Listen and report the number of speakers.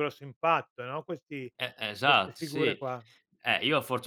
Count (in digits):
2